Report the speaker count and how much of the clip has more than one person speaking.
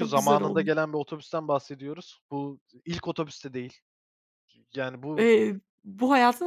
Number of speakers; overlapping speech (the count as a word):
two, about 12%